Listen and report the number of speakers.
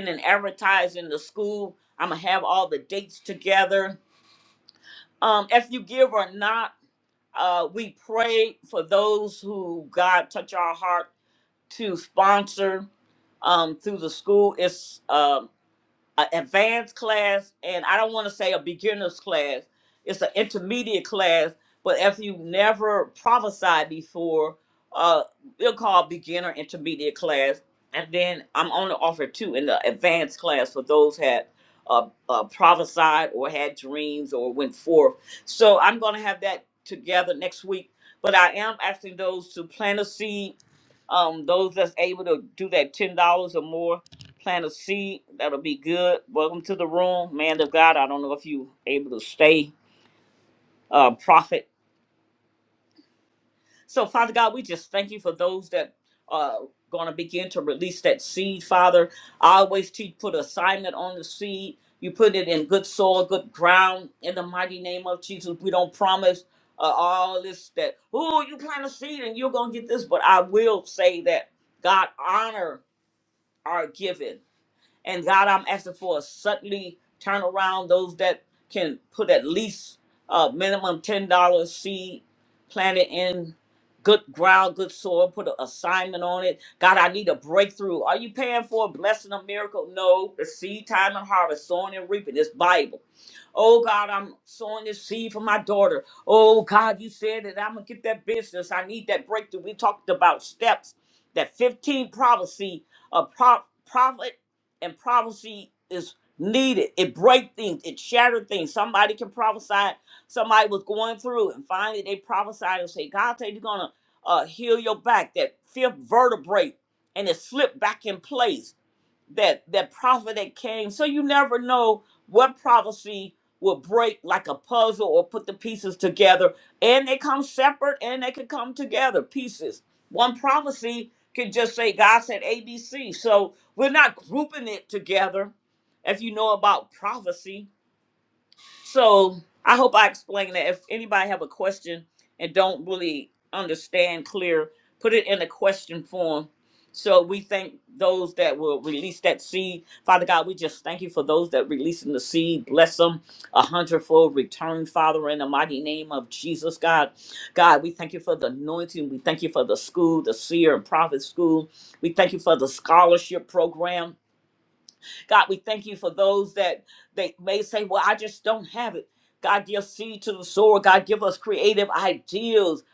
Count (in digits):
1